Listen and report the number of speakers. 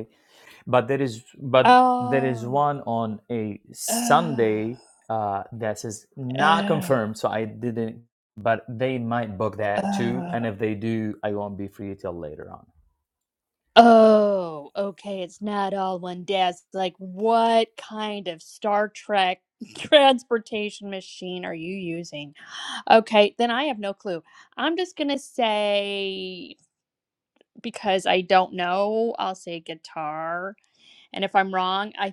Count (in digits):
2